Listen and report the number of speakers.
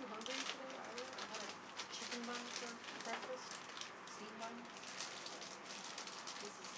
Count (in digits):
1